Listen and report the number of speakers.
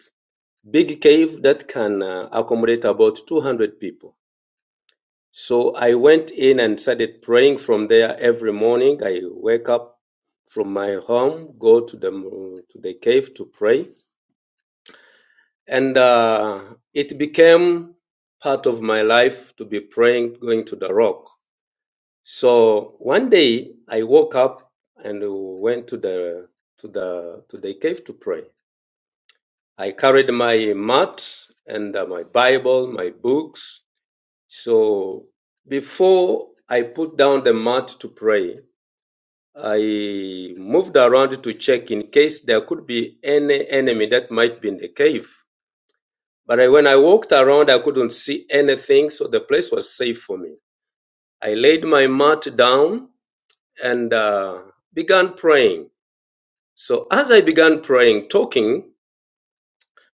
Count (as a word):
one